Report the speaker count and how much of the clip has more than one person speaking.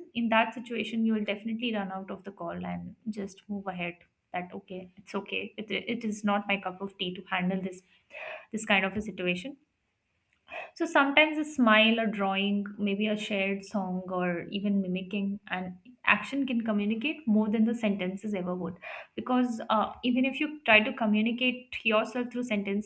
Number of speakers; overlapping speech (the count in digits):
1, no overlap